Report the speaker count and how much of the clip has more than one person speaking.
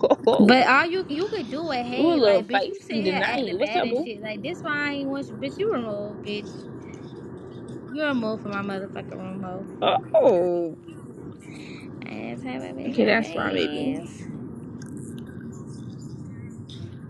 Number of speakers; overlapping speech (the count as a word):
two, about 20%